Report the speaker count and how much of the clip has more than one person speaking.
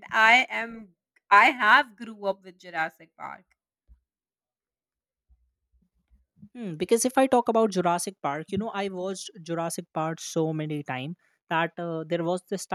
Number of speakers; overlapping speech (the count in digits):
2, no overlap